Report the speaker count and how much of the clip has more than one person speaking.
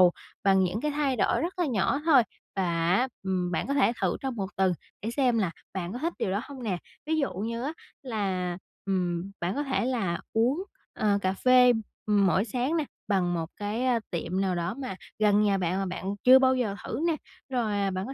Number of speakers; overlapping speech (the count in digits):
1, no overlap